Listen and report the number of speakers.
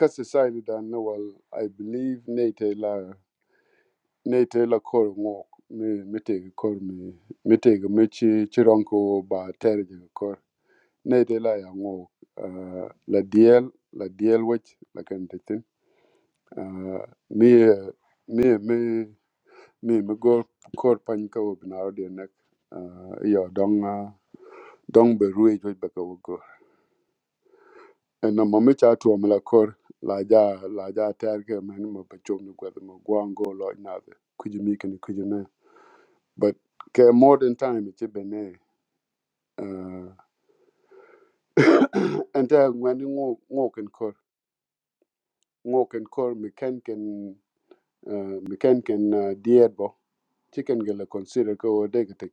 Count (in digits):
1